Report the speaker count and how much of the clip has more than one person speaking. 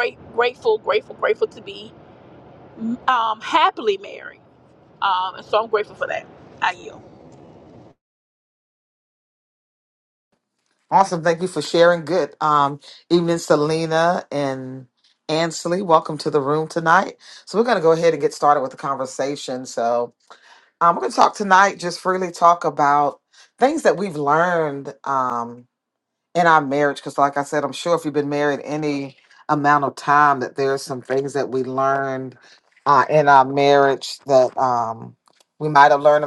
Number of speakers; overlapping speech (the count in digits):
2, no overlap